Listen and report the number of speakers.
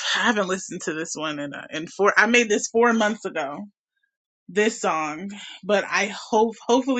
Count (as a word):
one